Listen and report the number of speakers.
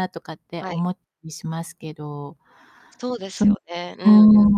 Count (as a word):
two